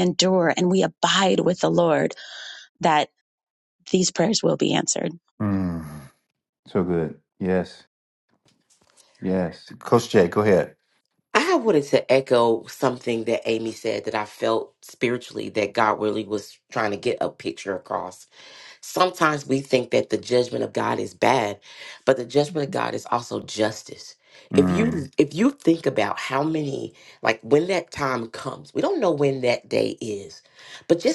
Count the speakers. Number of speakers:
three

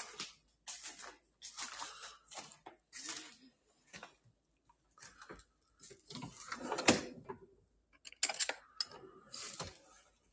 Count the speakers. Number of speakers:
zero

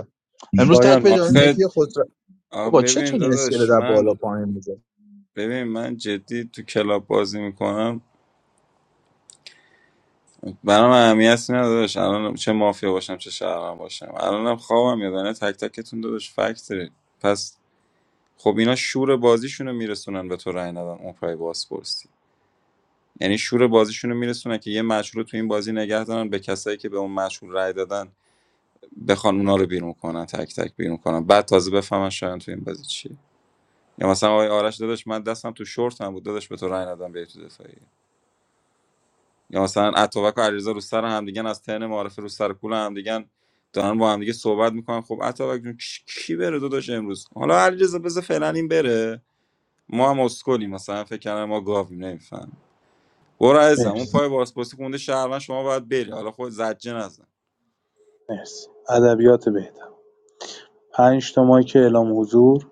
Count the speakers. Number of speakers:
three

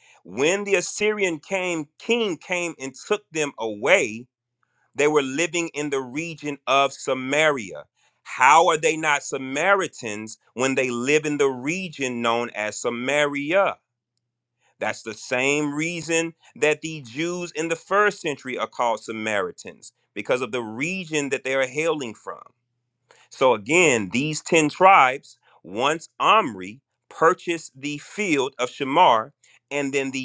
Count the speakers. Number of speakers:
one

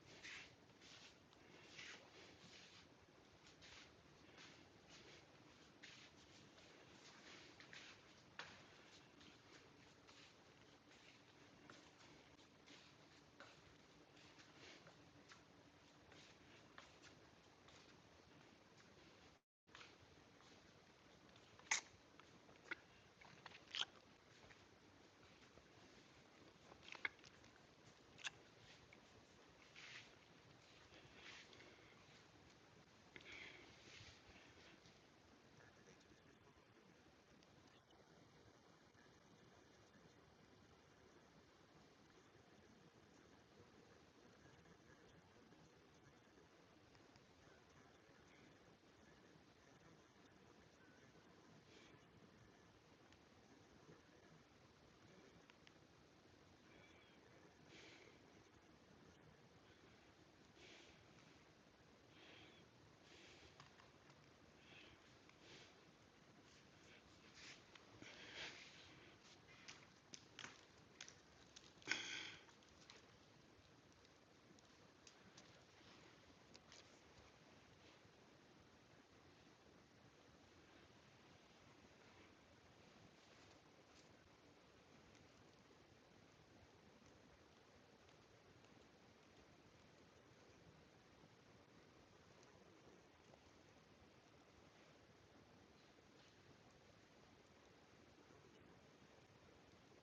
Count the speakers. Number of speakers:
zero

